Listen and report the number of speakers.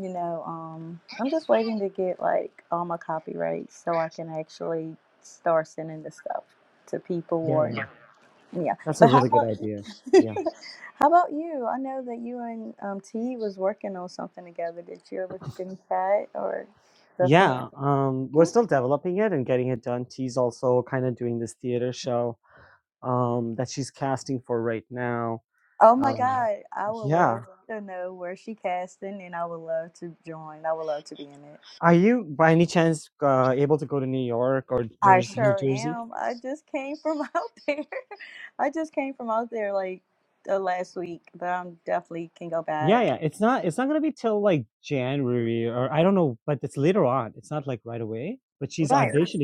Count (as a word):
two